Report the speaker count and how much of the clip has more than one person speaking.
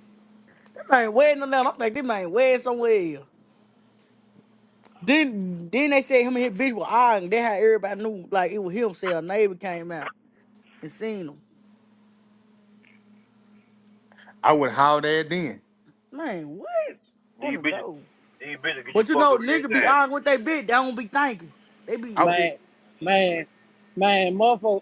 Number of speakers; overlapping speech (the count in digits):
4, about 7%